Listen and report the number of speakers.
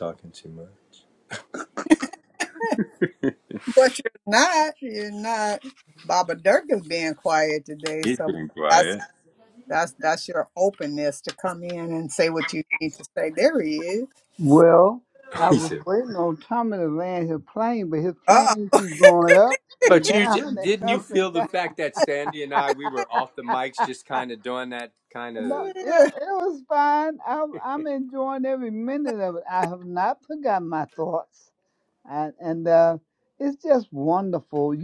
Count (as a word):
three